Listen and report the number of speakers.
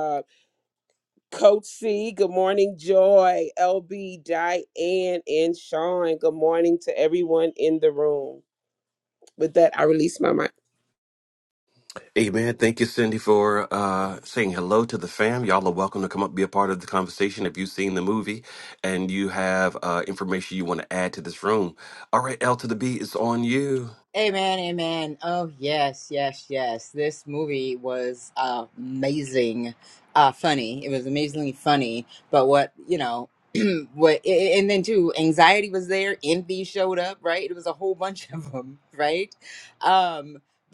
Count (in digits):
3